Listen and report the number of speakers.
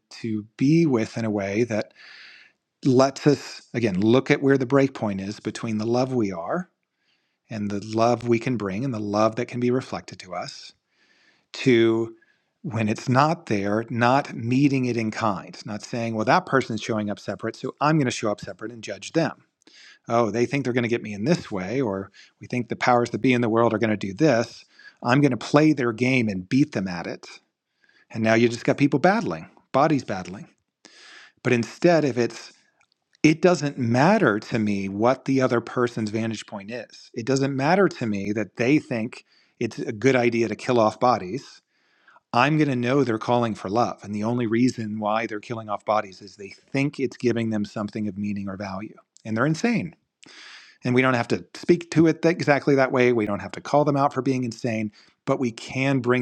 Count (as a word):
one